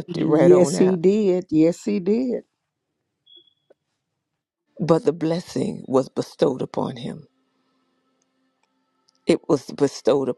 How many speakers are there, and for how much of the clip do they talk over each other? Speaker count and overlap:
2, about 8%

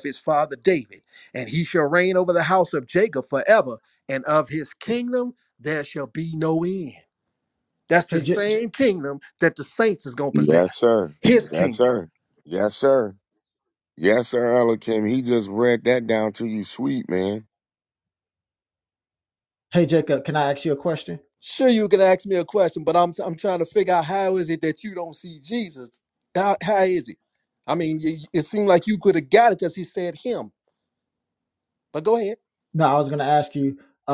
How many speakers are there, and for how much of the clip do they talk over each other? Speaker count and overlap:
3, about 3%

